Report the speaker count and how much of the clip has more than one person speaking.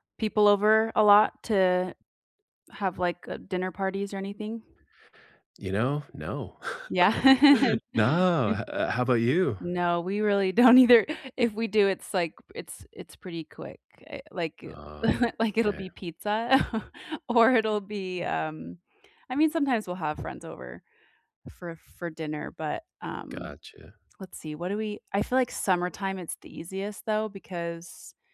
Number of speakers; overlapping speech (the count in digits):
2, about 2%